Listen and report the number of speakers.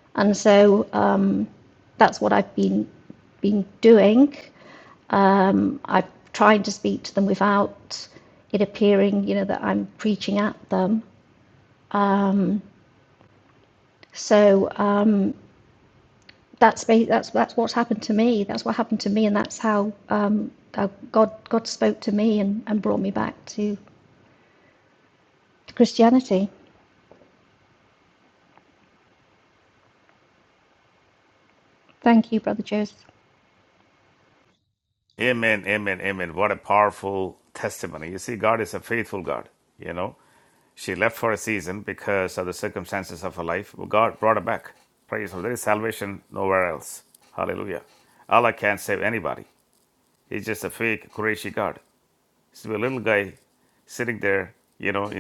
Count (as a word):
two